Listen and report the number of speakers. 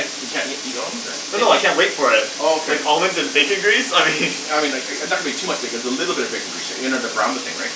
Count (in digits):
2